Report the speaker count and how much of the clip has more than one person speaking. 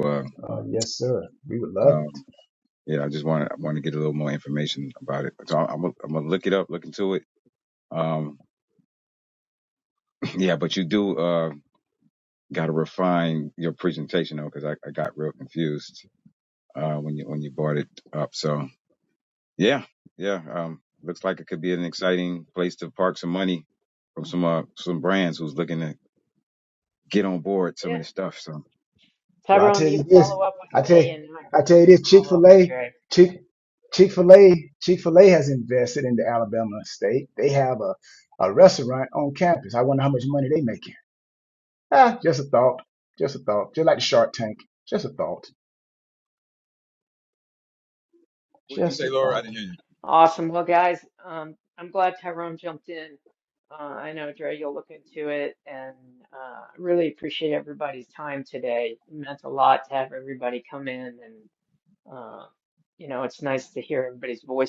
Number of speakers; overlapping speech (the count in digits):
3, about 5%